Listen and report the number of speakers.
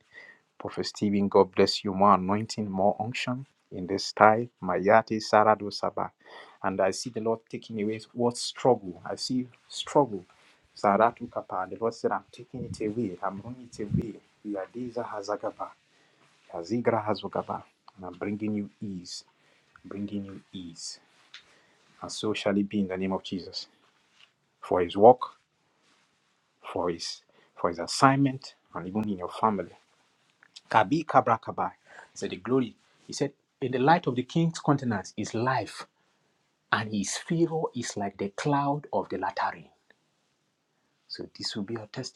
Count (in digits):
1